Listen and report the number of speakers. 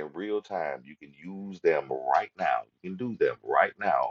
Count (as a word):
one